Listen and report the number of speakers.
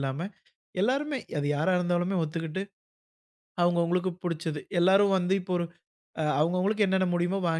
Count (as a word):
one